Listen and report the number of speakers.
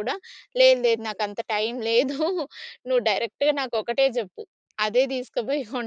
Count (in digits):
1